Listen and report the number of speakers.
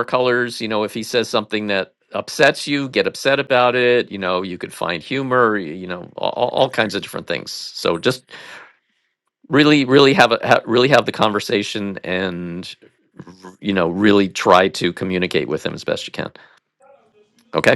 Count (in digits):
1